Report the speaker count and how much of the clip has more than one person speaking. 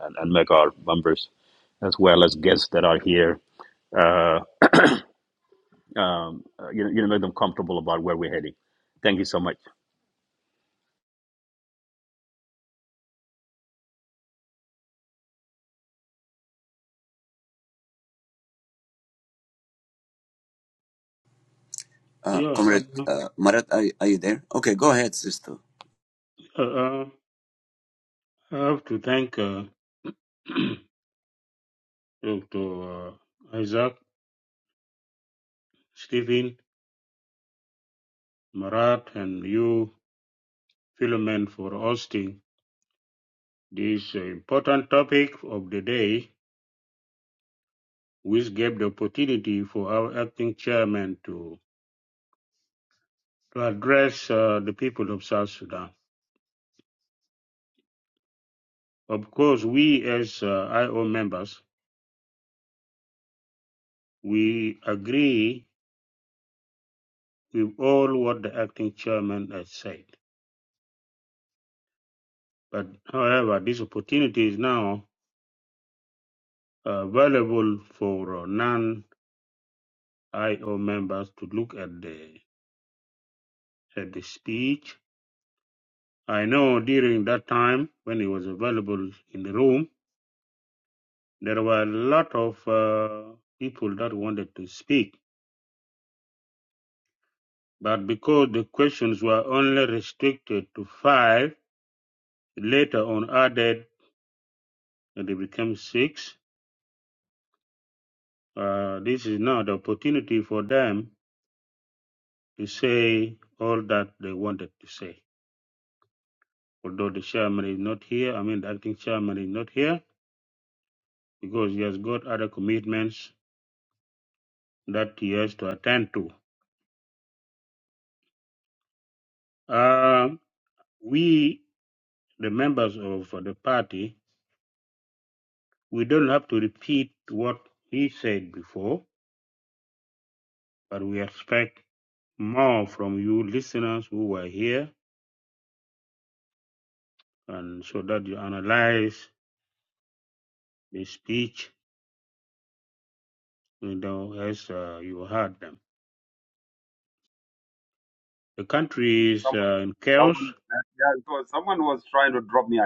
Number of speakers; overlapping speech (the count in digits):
4, about 1%